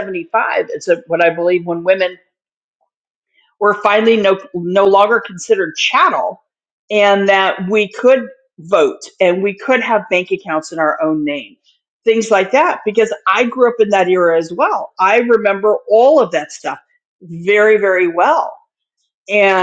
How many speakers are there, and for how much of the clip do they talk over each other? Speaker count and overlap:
1, no overlap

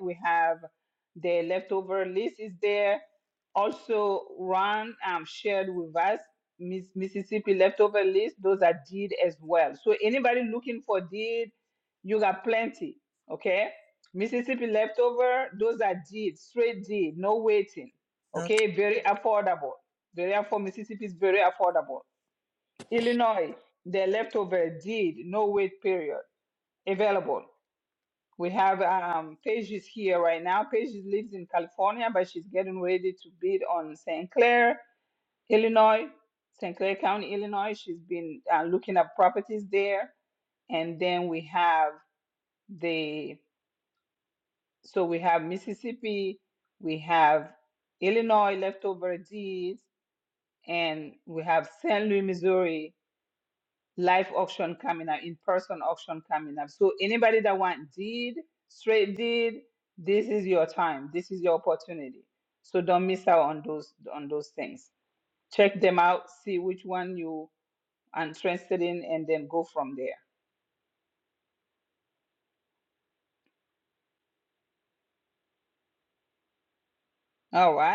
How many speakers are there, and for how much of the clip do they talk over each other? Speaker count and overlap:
1, no overlap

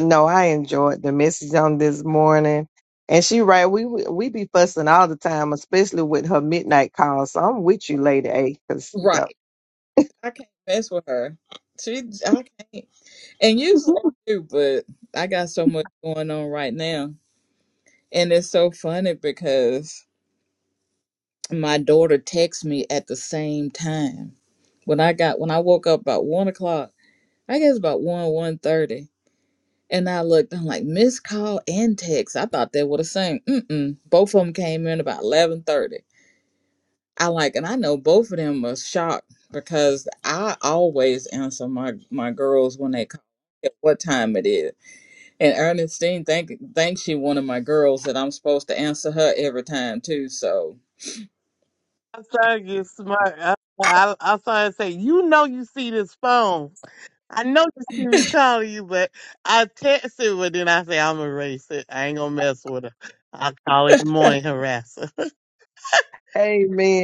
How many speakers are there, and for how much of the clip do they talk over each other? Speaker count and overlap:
3, about 1%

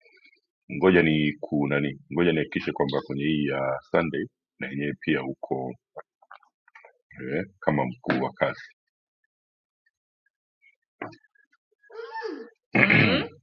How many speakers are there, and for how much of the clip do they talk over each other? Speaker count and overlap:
1, no overlap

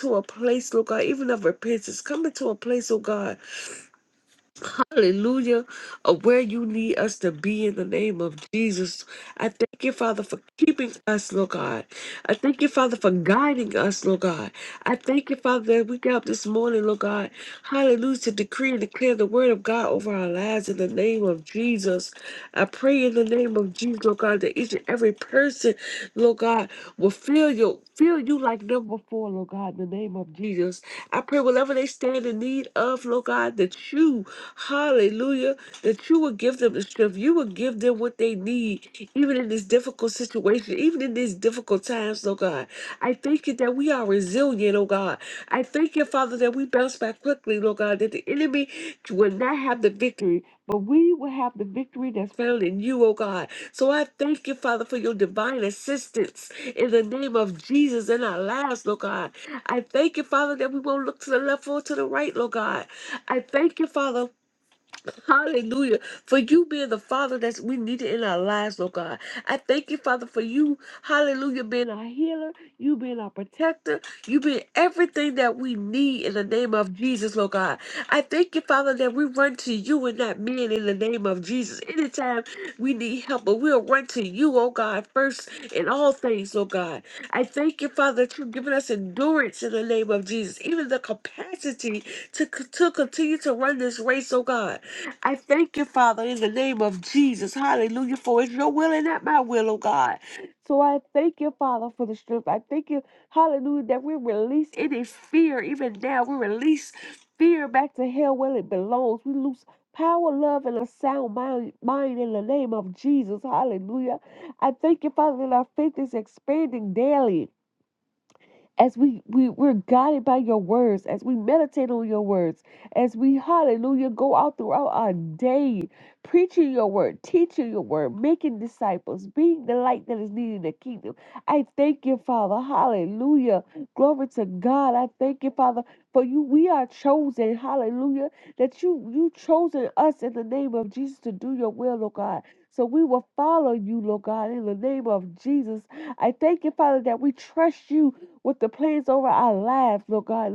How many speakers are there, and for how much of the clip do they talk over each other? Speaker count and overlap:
1, no overlap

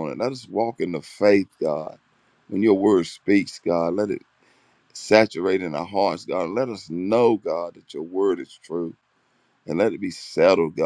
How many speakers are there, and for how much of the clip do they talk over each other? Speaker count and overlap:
1, no overlap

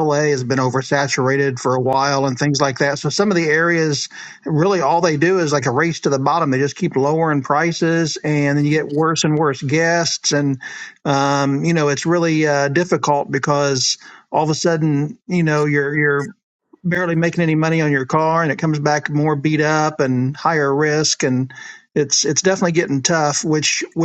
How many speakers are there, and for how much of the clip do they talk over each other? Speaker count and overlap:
1, no overlap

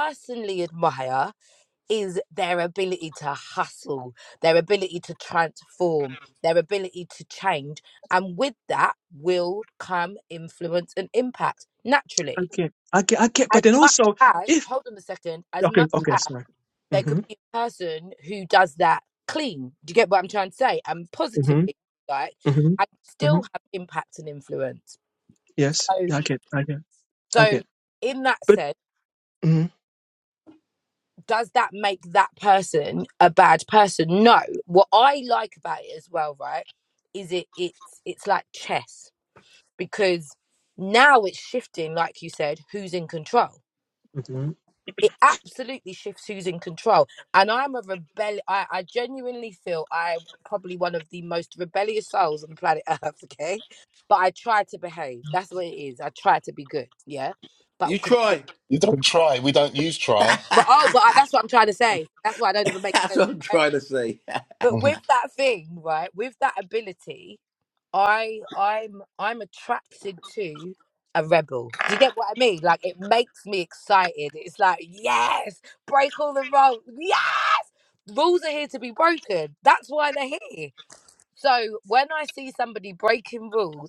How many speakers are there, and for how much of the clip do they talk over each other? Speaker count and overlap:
4, about 5%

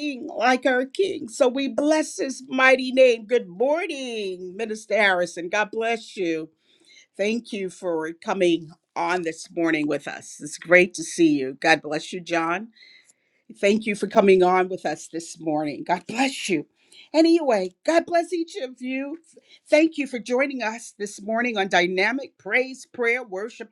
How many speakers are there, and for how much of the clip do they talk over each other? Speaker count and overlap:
1, no overlap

